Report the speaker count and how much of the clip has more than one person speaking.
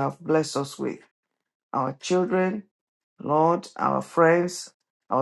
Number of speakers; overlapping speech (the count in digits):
1, no overlap